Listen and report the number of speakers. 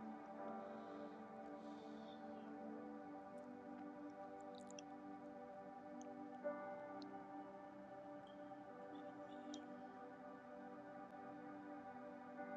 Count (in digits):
0